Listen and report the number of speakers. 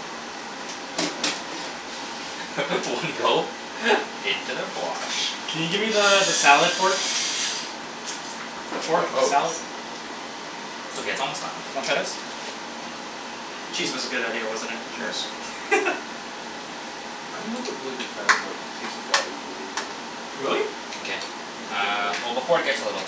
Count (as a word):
four